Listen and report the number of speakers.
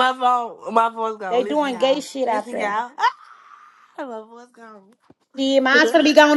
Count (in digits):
2